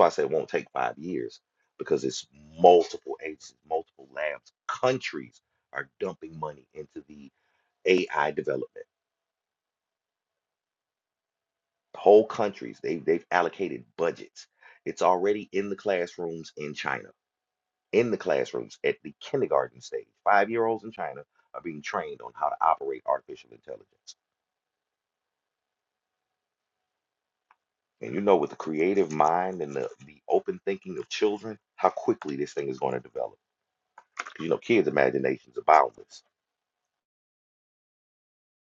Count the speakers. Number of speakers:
one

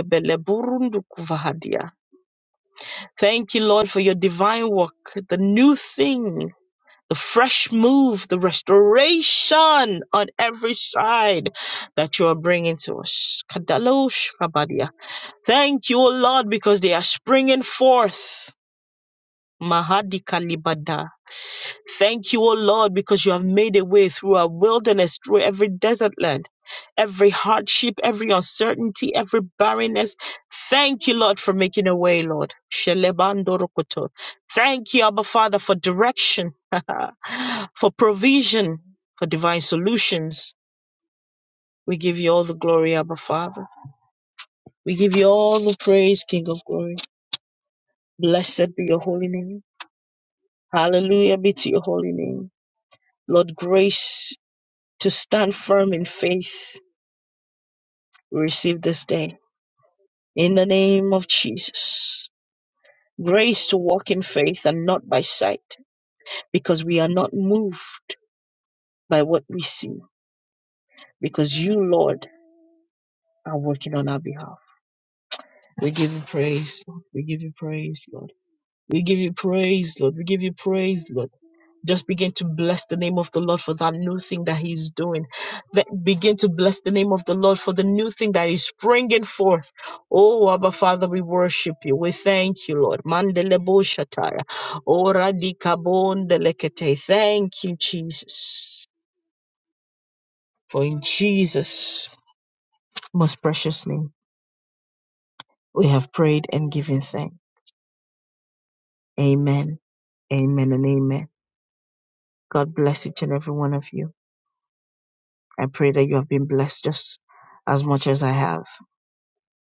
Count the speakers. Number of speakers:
one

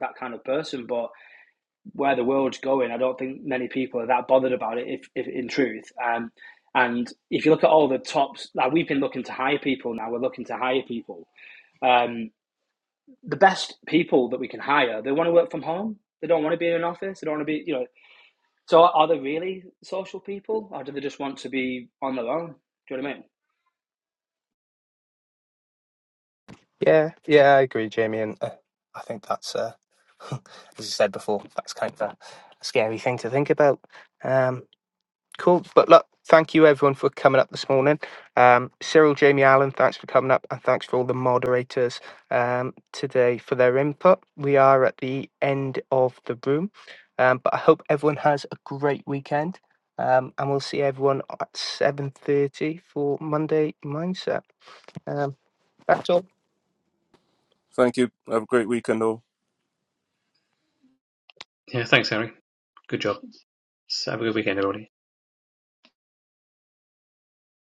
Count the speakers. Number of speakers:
four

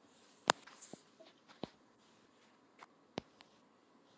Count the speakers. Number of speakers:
zero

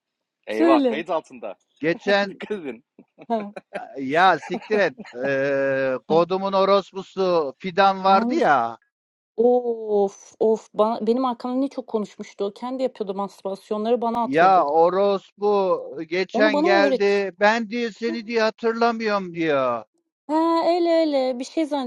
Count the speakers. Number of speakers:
three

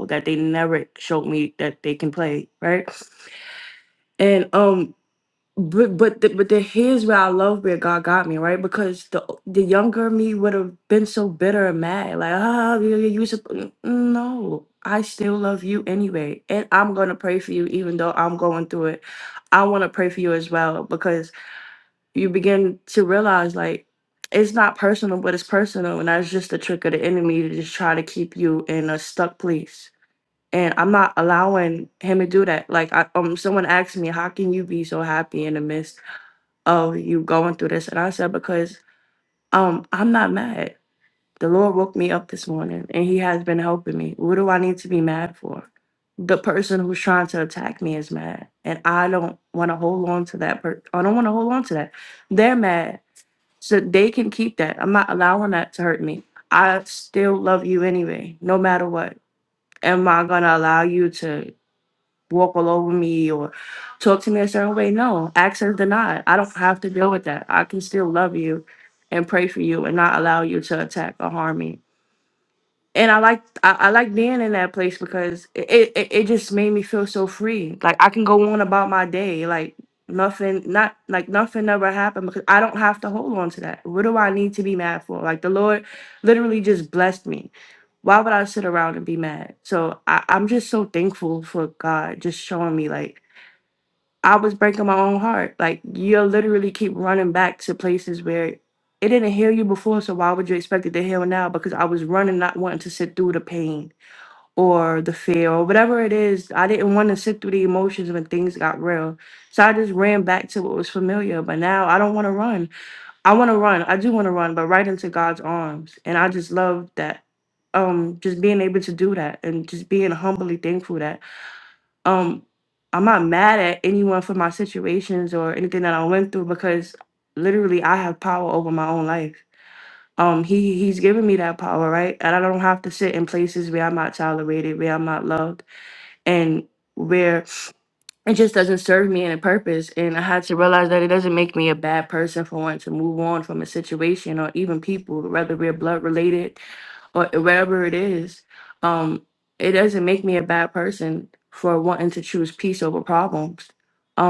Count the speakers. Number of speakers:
one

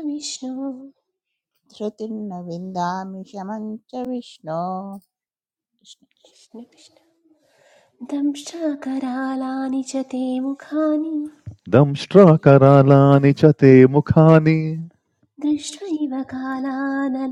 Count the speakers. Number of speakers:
three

